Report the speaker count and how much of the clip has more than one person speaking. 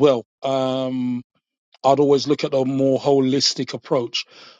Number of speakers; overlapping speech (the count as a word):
one, no overlap